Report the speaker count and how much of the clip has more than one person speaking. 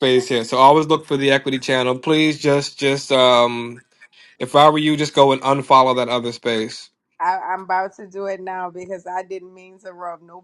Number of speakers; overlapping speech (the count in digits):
2, no overlap